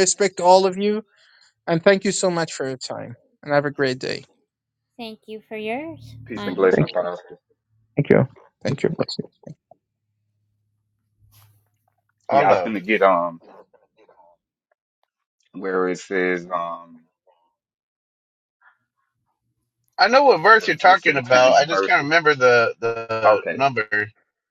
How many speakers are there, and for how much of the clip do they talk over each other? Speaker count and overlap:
4, about 12%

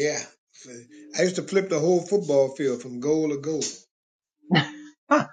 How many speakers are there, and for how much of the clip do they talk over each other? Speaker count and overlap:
1, no overlap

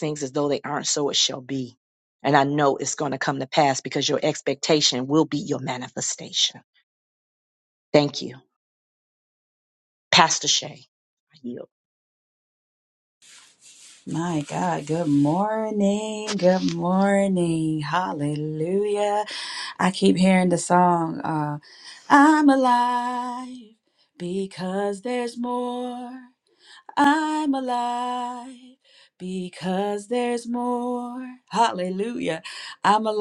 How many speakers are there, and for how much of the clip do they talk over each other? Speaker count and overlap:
2, no overlap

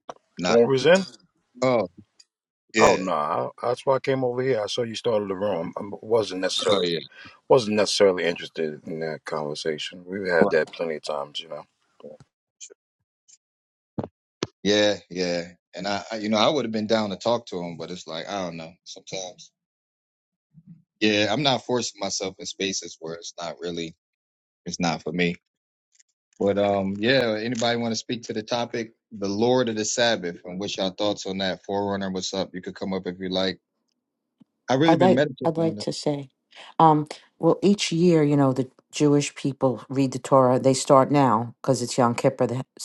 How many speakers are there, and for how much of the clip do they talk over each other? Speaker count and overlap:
3, about 4%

